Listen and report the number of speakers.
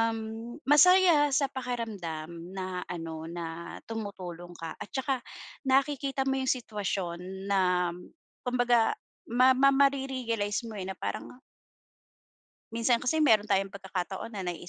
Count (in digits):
1